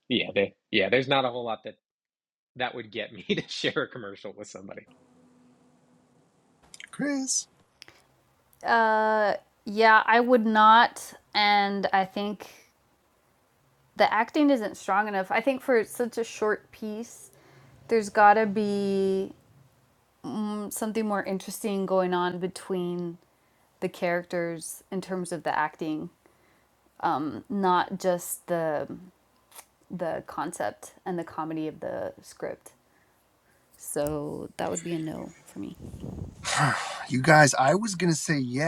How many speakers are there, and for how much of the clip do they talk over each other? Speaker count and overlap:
three, no overlap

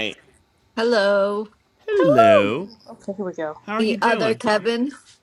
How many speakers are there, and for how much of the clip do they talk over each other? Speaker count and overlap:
three, about 20%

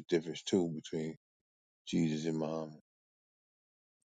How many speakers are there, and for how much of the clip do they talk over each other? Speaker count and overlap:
one, no overlap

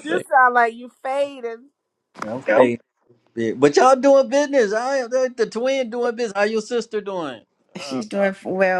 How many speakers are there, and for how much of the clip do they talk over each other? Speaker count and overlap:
three, about 3%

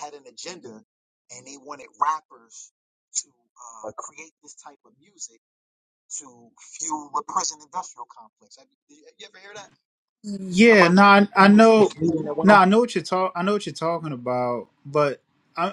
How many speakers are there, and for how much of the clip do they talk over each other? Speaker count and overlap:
two, about 10%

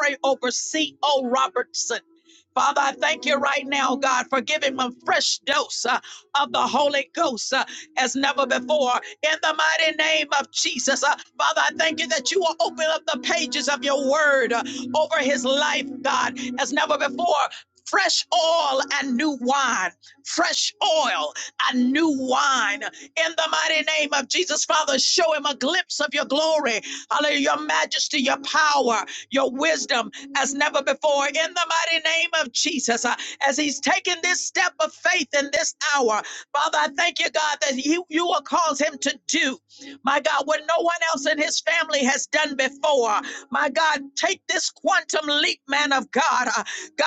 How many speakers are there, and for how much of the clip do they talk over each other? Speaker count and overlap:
one, no overlap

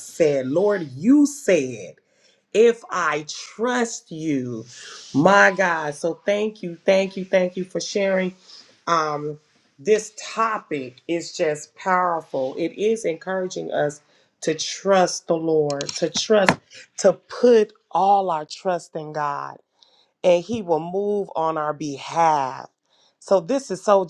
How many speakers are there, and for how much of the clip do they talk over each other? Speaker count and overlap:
one, no overlap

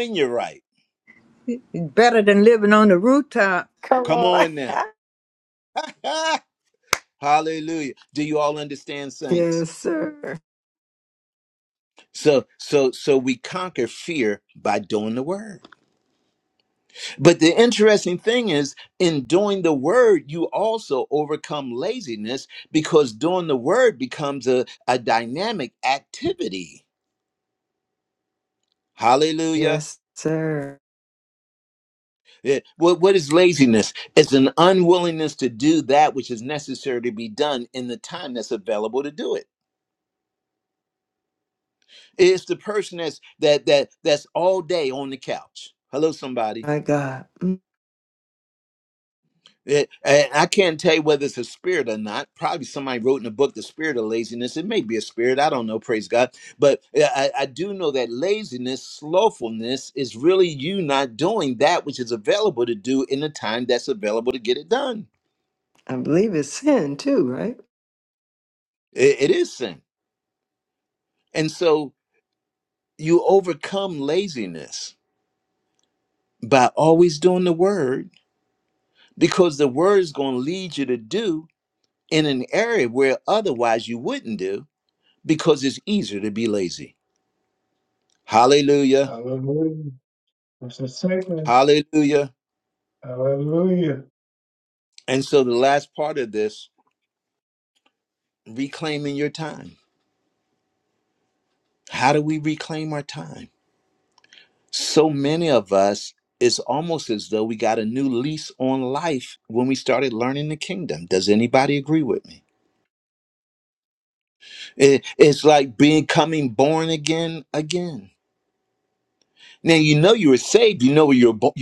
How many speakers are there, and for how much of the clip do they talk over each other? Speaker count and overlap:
four, about 1%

